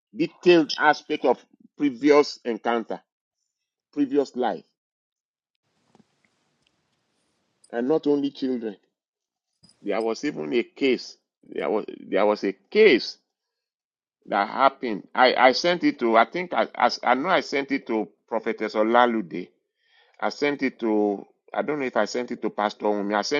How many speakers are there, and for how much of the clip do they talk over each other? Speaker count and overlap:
1, no overlap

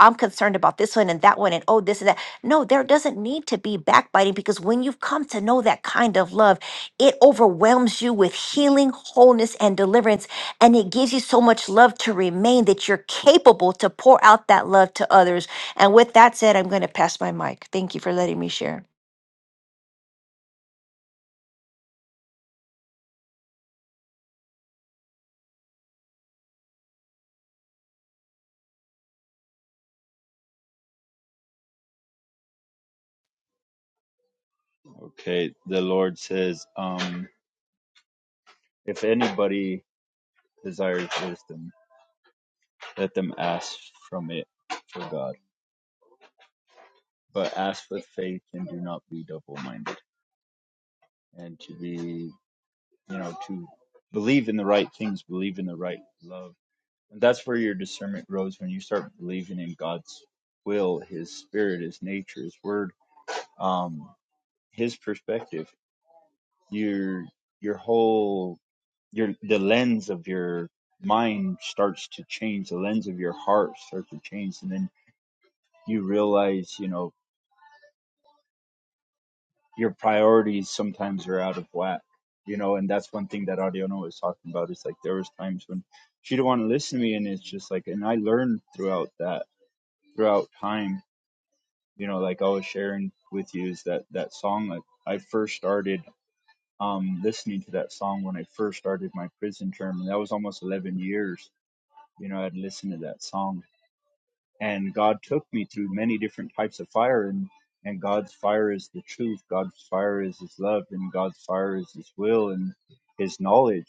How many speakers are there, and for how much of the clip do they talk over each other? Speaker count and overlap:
2, no overlap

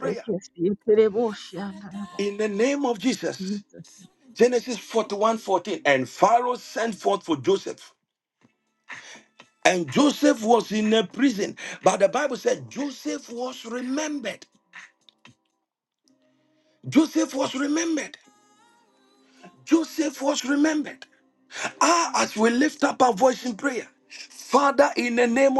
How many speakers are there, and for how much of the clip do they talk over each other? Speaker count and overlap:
2, about 1%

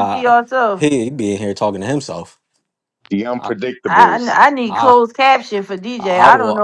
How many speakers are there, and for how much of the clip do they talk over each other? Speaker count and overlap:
3, about 23%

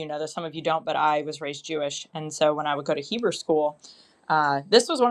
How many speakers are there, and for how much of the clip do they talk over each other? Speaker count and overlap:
1, no overlap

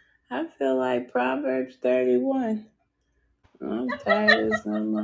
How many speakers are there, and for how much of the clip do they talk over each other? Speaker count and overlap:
1, no overlap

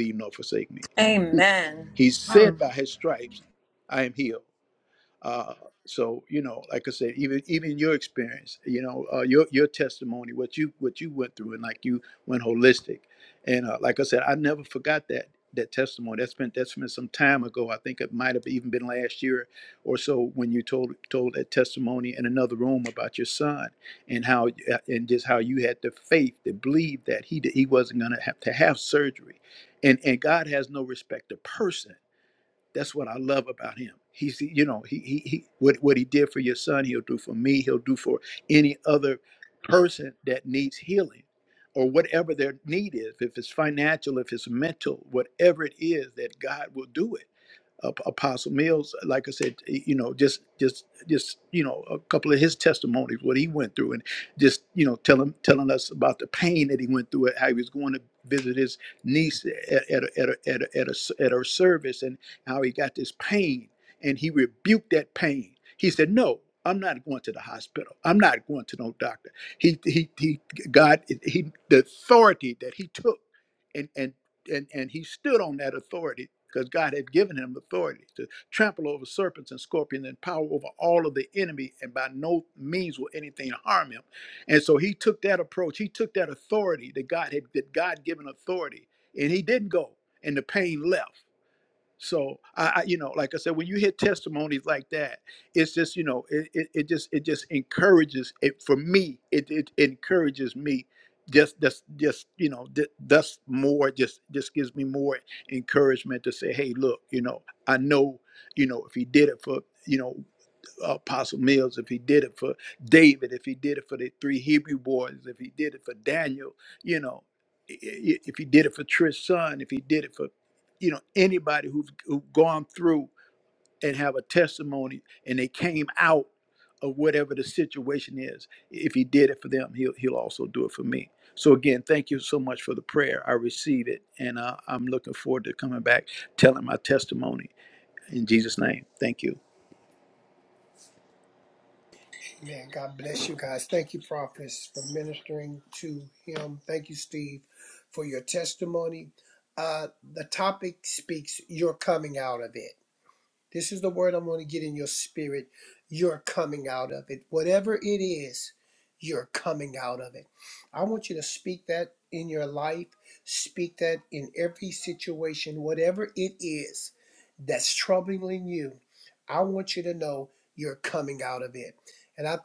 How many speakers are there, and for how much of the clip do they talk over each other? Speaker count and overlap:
3, under 1%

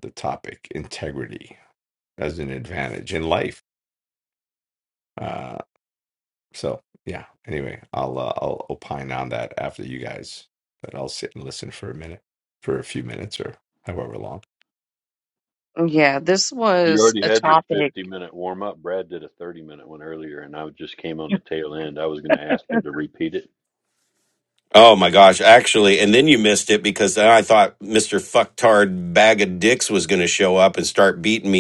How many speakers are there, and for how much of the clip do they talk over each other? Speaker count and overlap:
4, about 3%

